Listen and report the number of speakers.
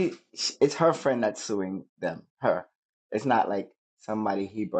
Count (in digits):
1